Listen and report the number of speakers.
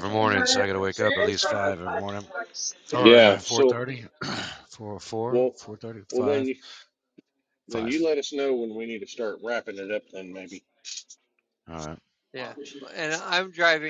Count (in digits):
3